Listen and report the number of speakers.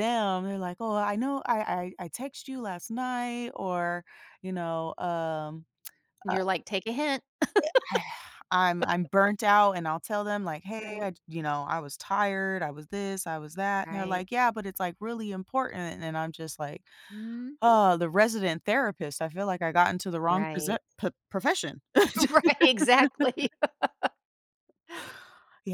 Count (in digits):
2